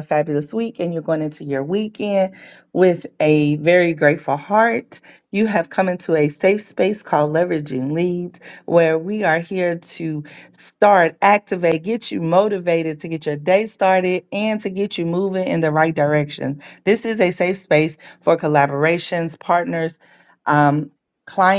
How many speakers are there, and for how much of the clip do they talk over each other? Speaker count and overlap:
one, no overlap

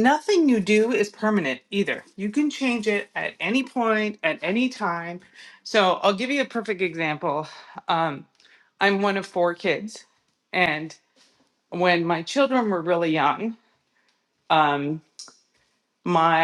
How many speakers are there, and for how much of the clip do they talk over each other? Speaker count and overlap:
one, no overlap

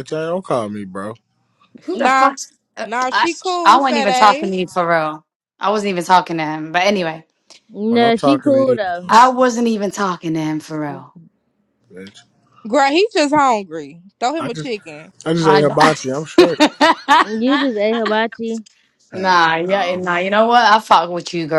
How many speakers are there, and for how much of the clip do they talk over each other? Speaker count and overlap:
four, about 19%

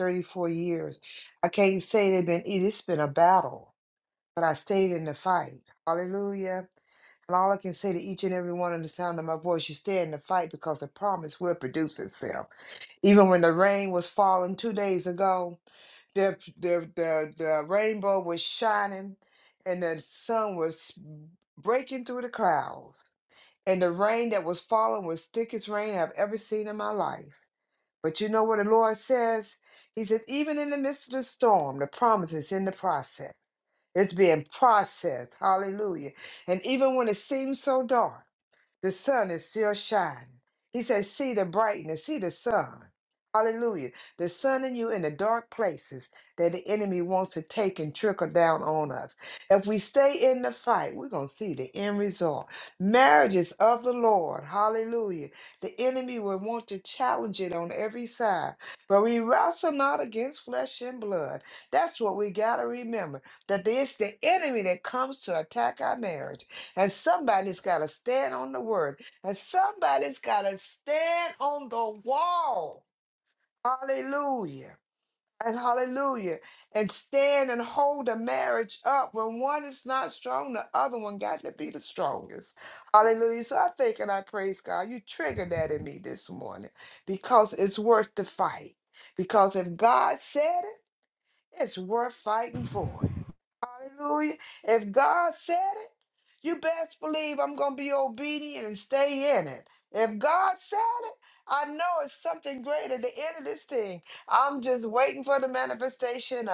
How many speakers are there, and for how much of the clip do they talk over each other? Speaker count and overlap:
one, no overlap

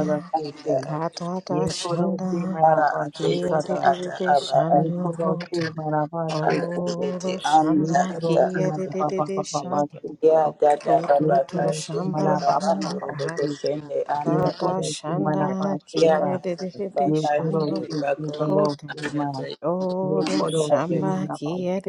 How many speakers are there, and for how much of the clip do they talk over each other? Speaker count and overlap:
three, about 85%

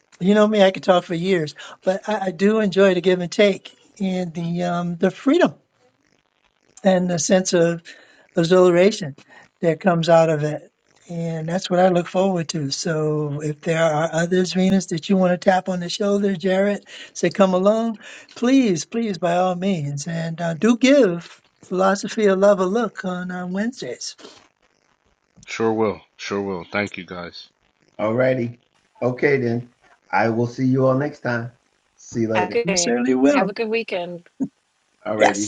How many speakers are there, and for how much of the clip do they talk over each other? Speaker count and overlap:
four, about 3%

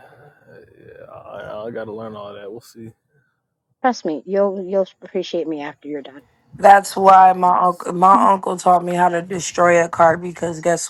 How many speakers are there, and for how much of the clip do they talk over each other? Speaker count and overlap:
three, about 1%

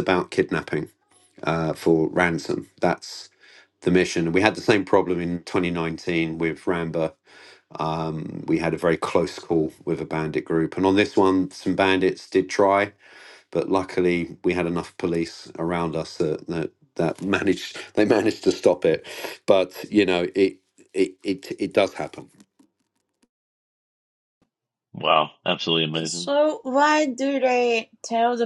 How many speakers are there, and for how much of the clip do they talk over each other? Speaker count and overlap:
three, about 1%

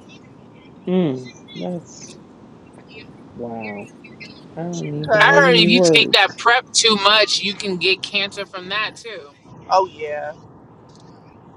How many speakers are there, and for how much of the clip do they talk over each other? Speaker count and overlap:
three, about 10%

